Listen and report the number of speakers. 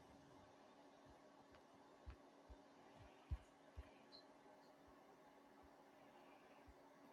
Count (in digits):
0